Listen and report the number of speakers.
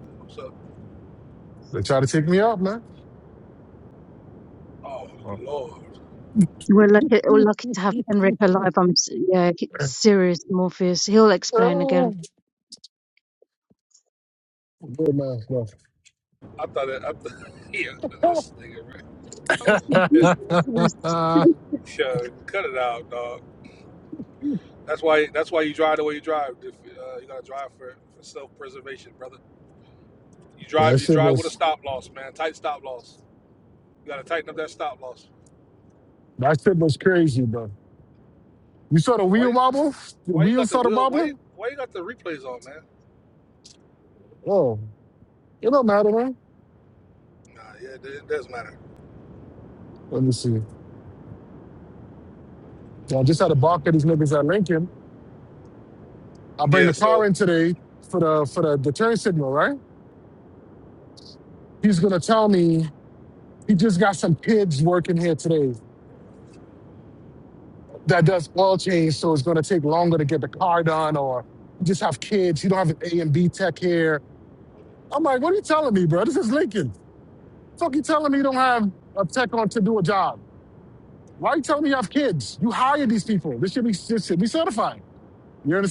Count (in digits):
3